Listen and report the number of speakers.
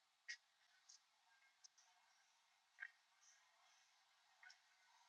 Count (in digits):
0